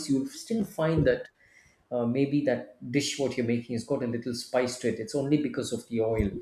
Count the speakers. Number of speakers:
1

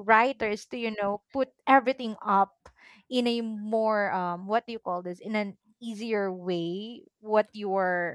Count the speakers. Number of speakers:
1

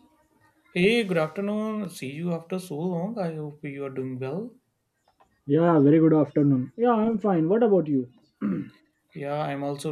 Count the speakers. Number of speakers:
2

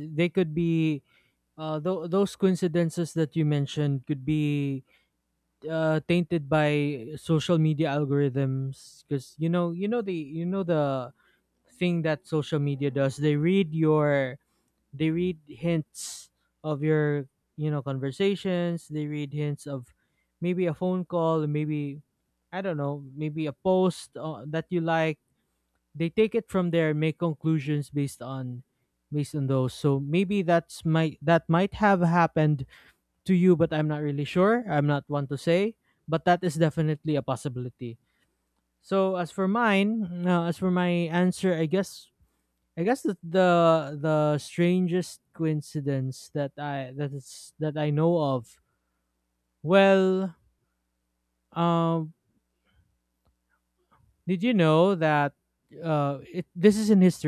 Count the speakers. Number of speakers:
1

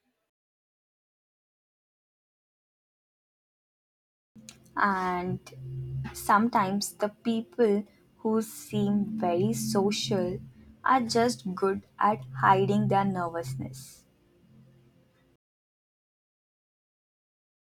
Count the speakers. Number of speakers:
1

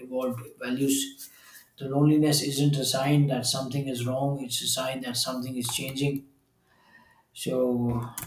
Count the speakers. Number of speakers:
1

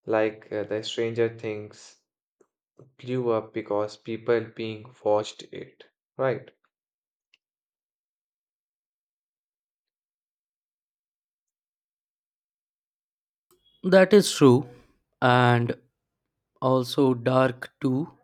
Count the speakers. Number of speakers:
2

